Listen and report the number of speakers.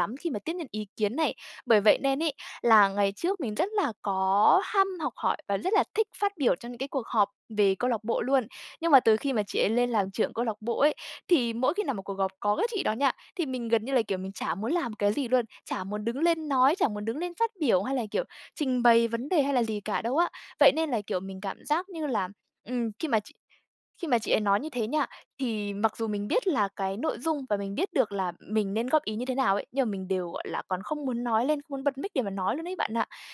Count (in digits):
1